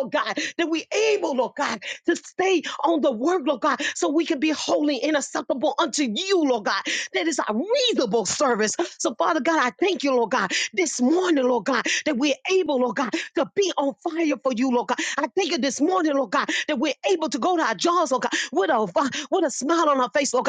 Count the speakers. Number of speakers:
one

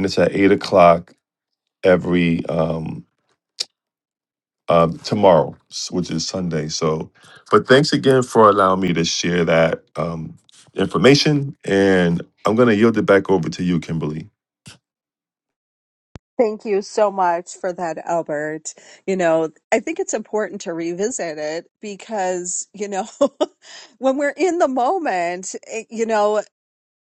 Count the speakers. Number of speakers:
two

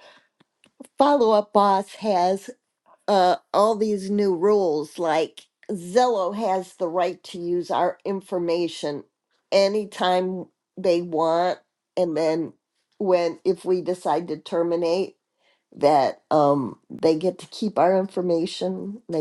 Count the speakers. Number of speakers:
one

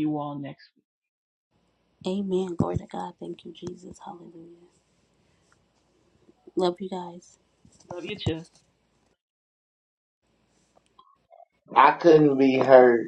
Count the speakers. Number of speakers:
three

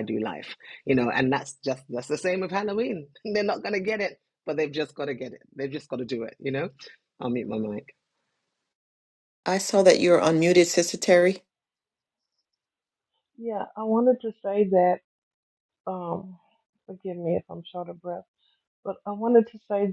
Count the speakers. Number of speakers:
three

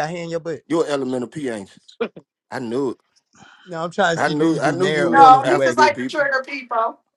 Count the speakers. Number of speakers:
three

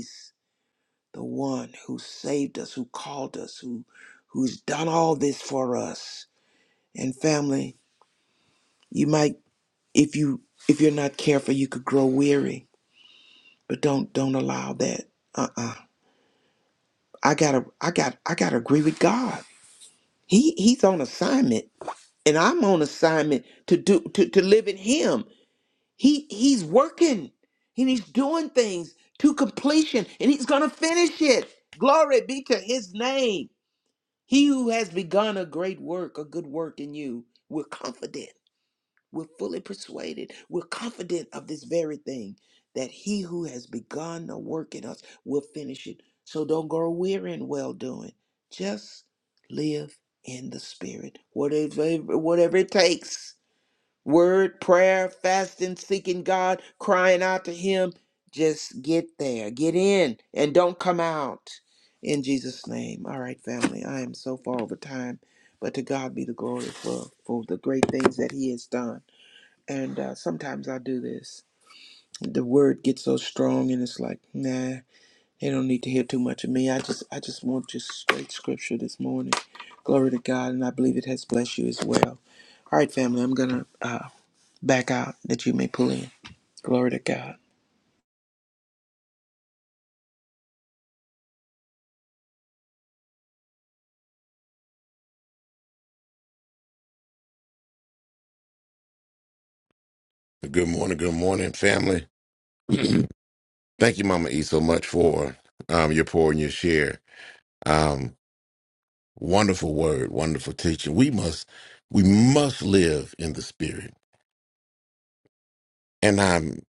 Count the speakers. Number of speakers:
two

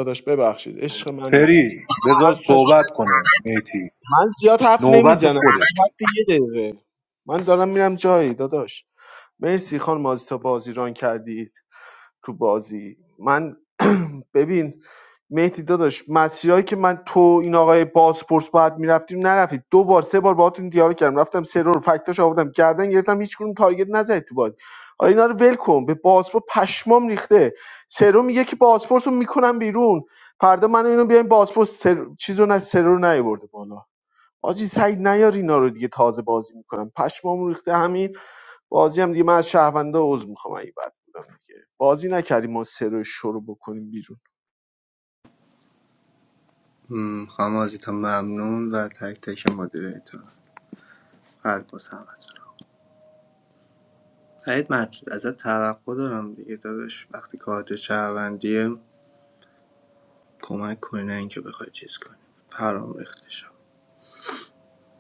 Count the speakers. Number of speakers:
three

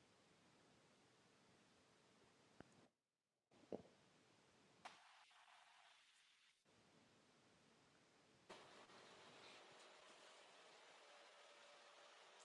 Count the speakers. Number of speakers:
zero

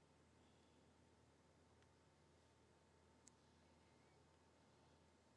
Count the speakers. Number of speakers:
zero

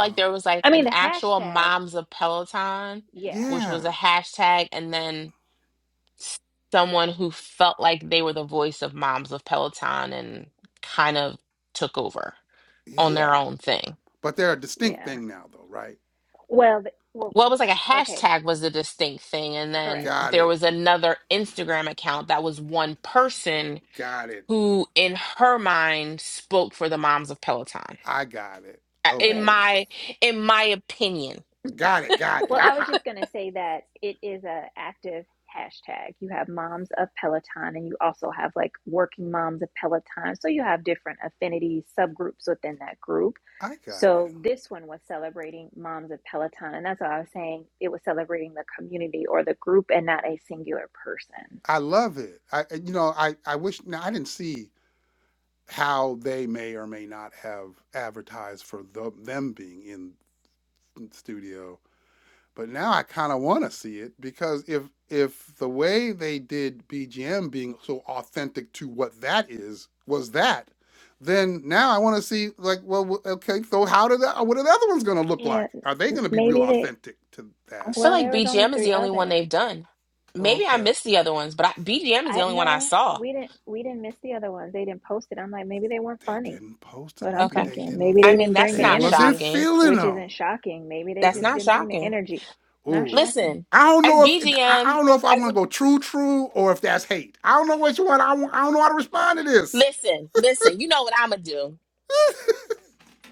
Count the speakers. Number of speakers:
three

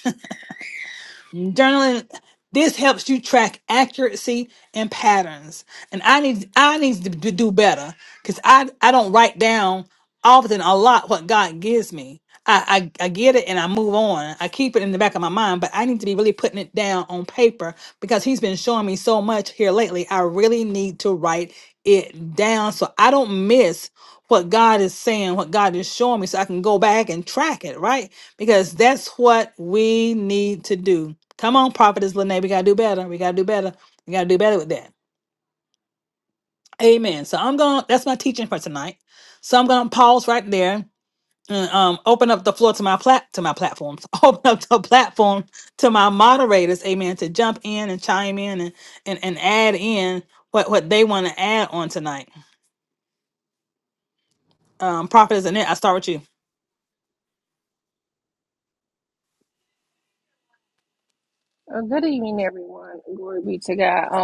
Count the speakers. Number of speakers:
two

